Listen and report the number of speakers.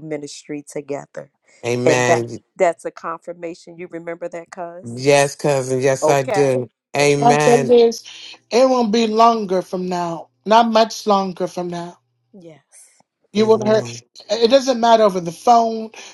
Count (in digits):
3